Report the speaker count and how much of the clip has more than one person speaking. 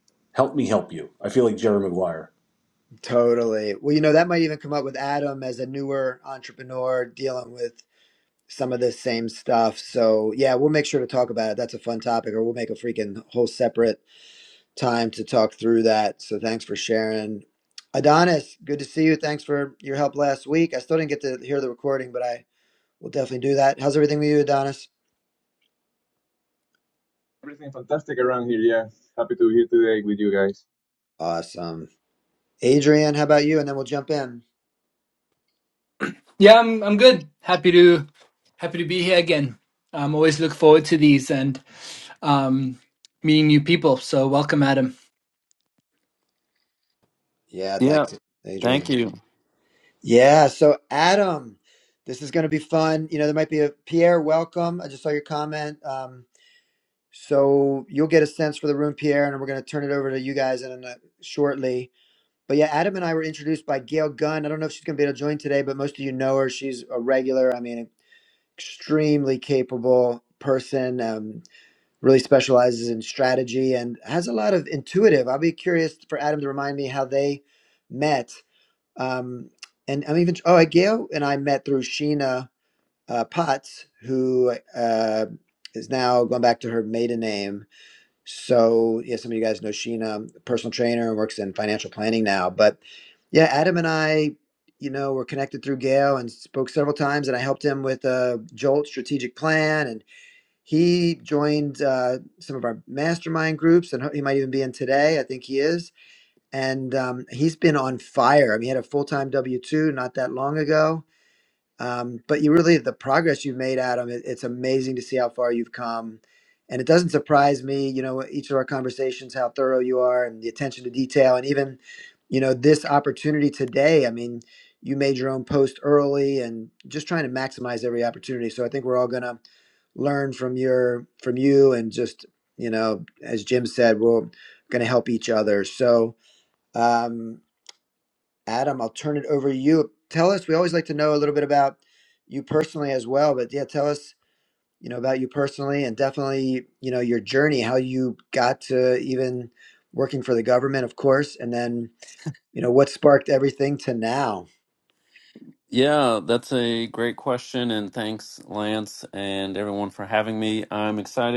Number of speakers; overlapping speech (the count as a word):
five, under 1%